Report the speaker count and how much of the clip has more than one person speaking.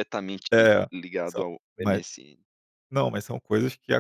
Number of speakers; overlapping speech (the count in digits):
2, about 7%